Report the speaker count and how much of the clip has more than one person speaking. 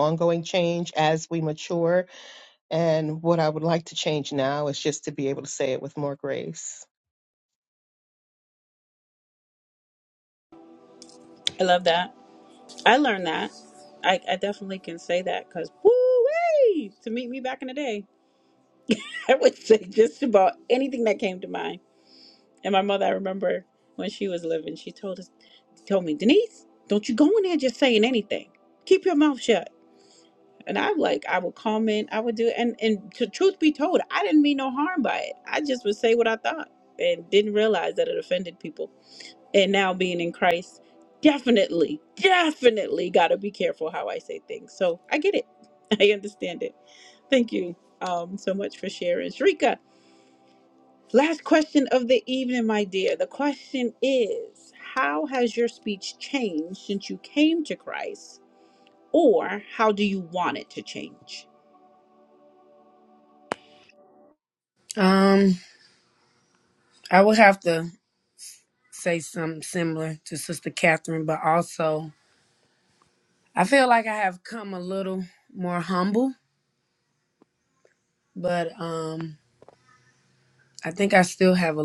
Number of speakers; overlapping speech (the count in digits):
3, no overlap